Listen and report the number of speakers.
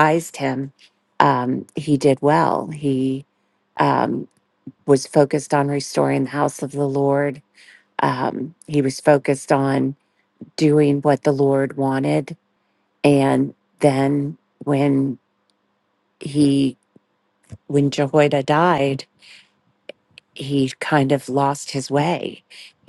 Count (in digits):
1